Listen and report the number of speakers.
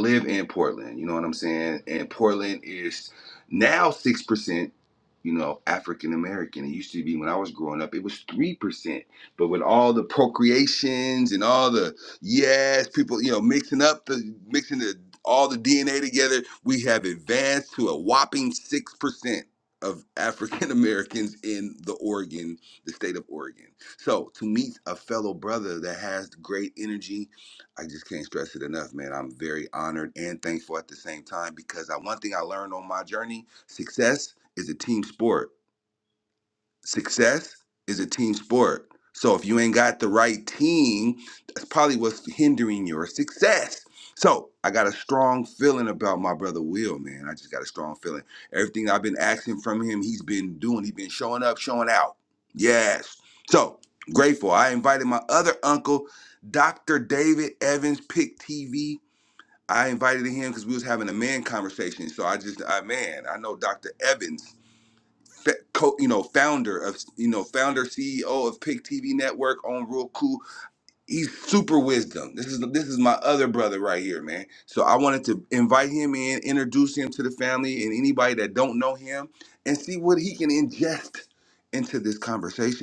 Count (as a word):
one